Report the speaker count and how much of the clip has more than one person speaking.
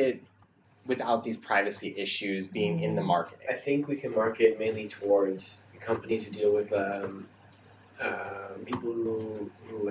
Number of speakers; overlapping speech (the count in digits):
2, under 1%